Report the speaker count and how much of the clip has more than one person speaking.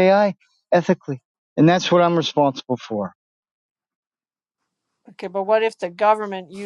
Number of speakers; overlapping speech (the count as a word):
two, no overlap